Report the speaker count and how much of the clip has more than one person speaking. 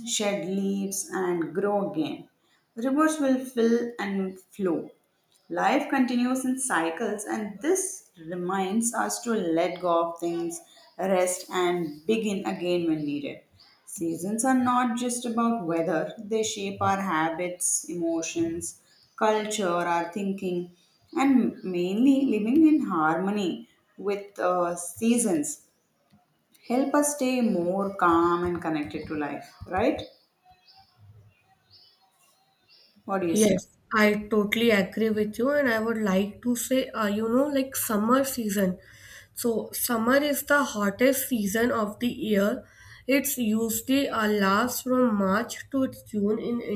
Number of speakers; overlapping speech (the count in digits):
2, about 1%